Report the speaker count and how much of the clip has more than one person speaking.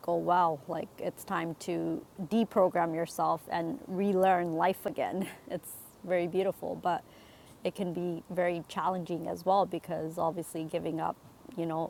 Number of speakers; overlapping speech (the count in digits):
1, no overlap